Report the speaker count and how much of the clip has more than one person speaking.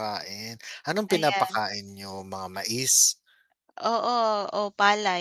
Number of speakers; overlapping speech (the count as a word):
two, about 9%